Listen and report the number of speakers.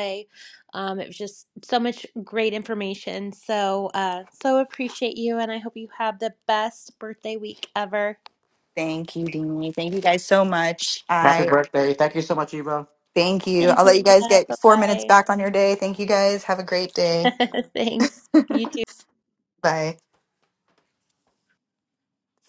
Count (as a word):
three